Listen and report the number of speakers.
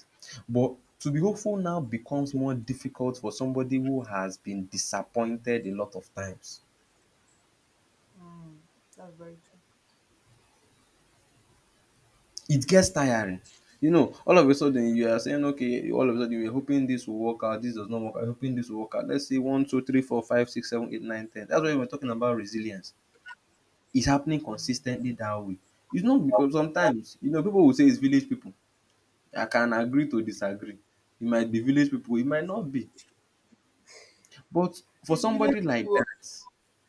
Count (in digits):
2